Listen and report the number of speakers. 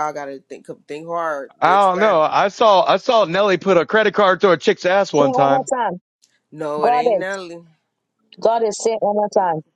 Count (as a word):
three